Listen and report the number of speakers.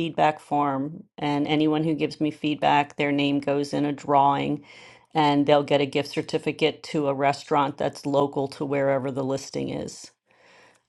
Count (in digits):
1